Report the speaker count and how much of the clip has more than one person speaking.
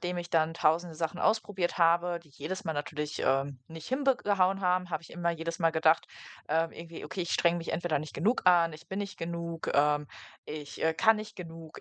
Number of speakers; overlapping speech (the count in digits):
1, no overlap